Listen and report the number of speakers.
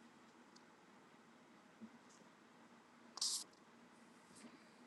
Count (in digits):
0